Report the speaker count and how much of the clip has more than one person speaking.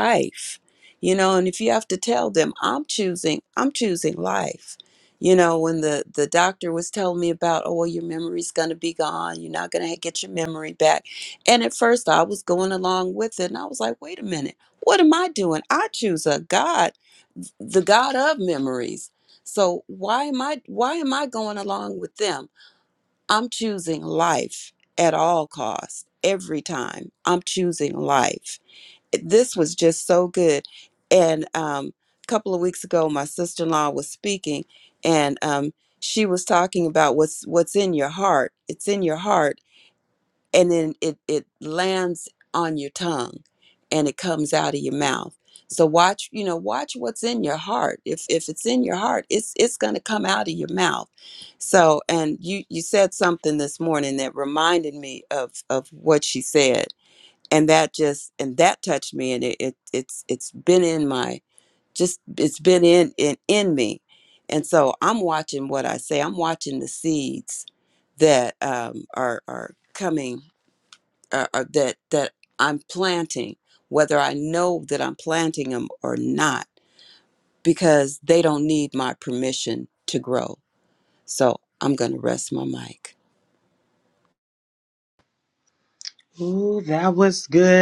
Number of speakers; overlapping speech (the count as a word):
two, no overlap